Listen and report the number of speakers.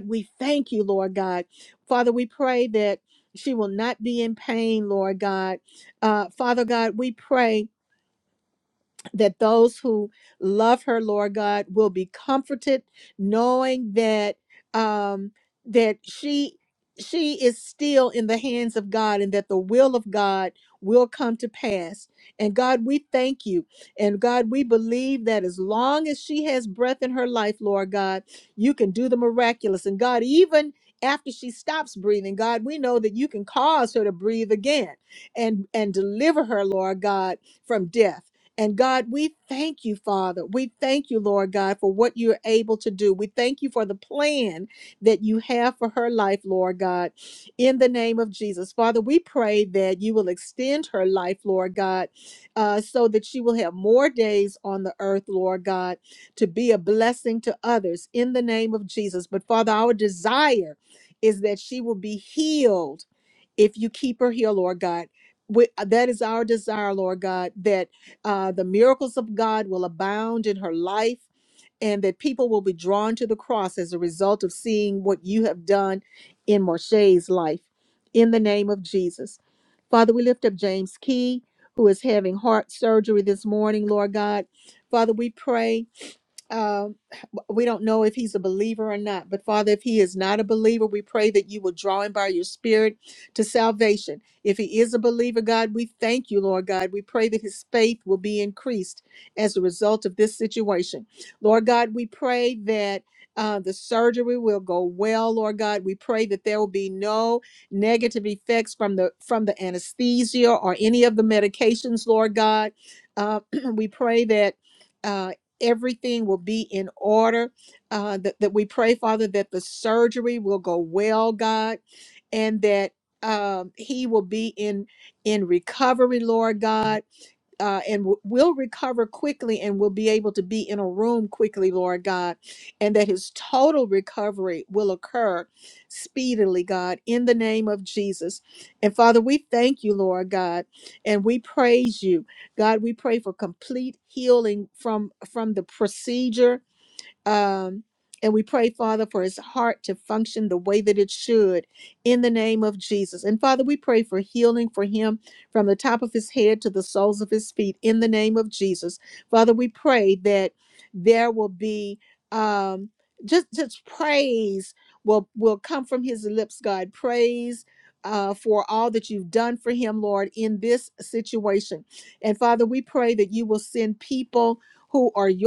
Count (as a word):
one